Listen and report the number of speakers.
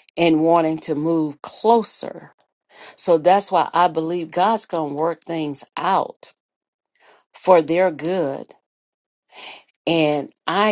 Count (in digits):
1